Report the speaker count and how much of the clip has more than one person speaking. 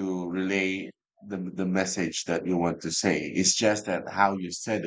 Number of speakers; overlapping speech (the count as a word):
one, no overlap